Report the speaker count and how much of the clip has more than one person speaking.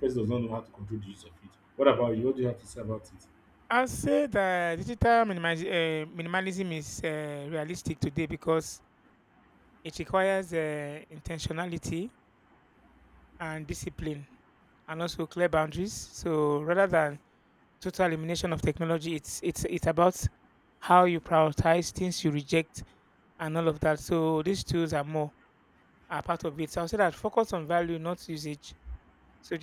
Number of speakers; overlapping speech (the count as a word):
two, no overlap